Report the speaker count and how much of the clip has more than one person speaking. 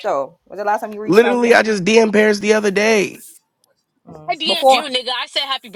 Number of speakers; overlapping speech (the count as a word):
three, about 19%